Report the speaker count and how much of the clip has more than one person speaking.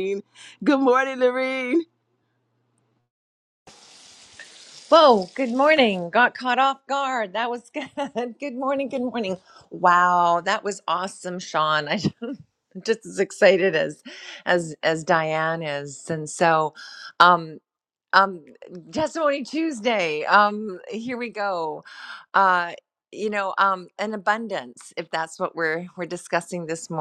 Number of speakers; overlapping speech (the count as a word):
two, no overlap